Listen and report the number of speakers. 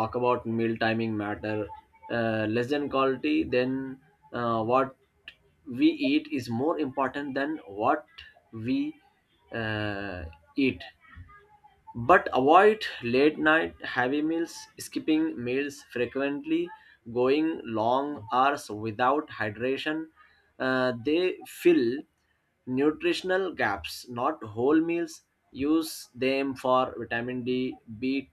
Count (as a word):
one